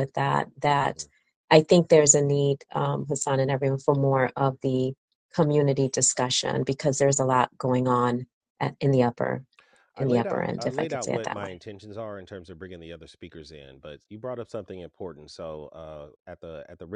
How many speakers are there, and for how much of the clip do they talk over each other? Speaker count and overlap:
2, about 9%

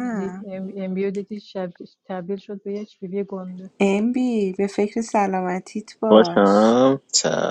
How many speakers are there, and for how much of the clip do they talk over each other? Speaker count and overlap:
3, about 7%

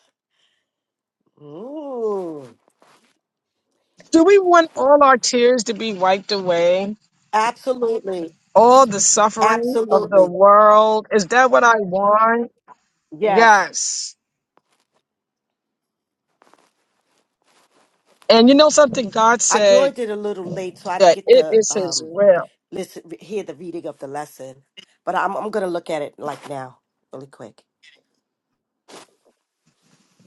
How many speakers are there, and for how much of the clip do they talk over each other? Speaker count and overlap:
2, about 9%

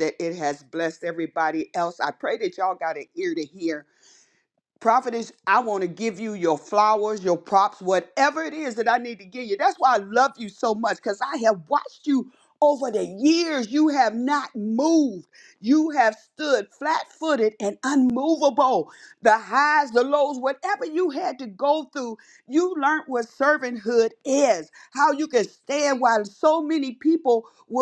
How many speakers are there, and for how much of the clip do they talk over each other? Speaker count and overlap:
1, no overlap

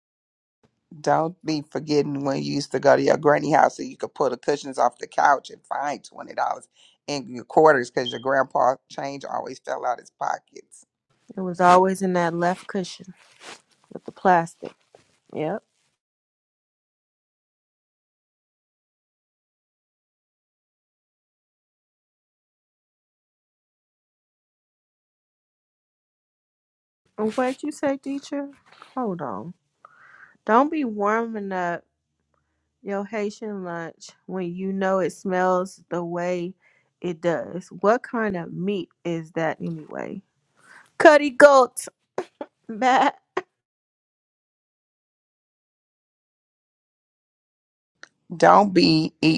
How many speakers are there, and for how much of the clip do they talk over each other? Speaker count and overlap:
2, no overlap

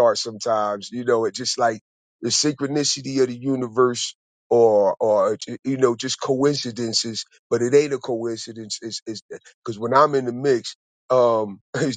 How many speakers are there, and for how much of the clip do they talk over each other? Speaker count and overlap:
1, no overlap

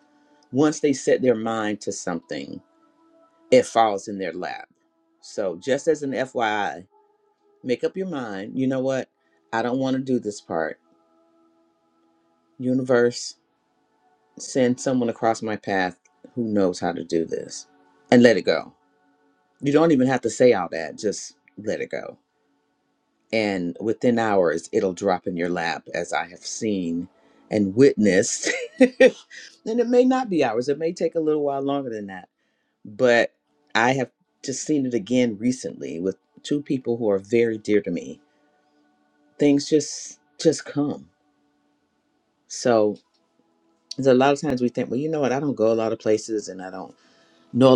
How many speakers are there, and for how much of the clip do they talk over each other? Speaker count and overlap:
1, no overlap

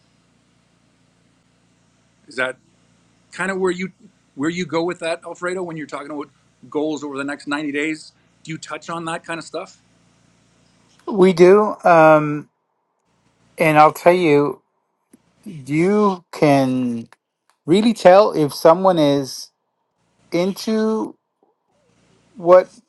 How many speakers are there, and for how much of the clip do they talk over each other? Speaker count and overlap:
2, no overlap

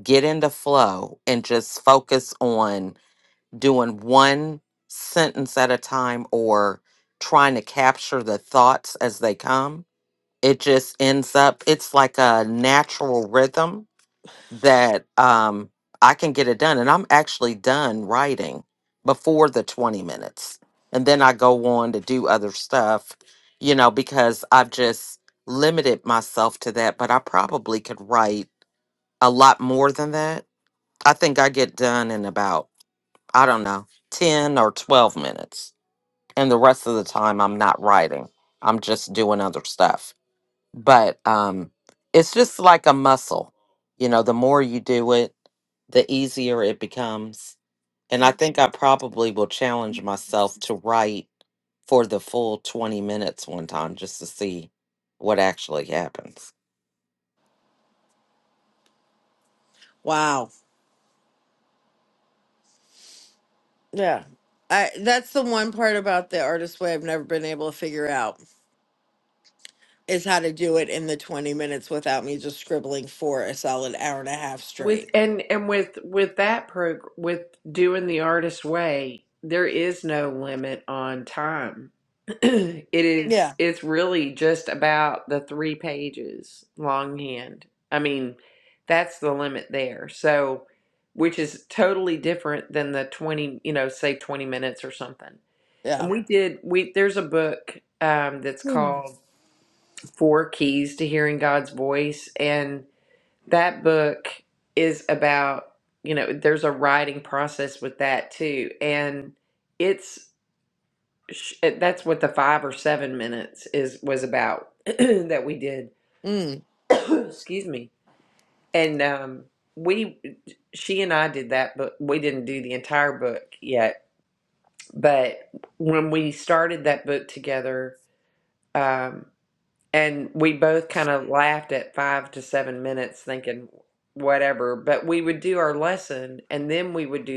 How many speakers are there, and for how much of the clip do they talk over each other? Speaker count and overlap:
3, about 1%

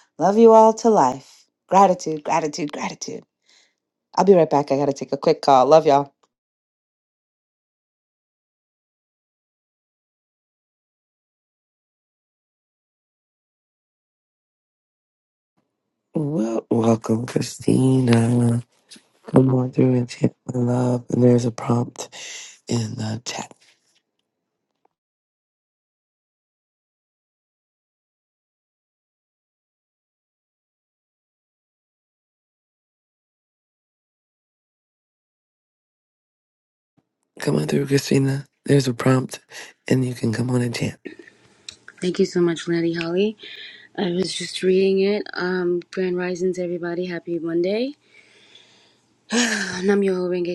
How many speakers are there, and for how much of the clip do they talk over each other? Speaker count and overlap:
3, no overlap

